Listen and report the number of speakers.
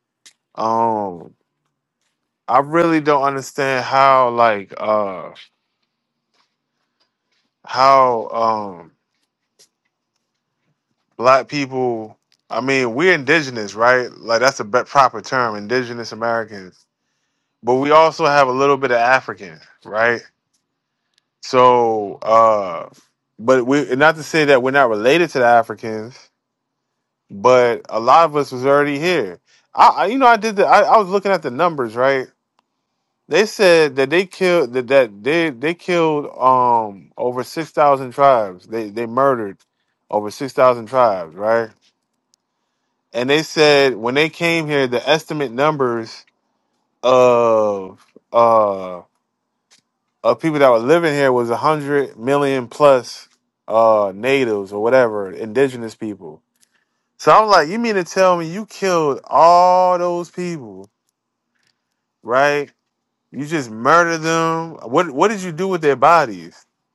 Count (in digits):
1